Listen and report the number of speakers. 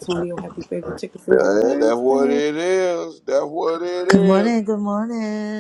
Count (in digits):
3